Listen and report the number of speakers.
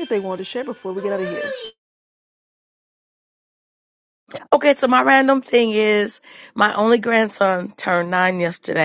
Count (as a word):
two